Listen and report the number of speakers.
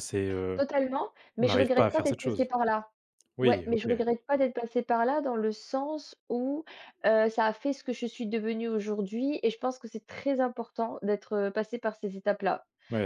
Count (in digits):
2